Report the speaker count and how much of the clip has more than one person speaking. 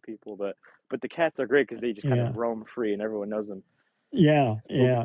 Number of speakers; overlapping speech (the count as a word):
two, about 12%